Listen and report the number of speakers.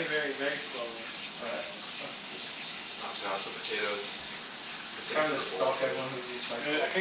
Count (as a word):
three